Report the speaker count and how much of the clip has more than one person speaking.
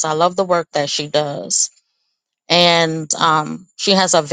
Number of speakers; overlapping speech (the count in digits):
1, no overlap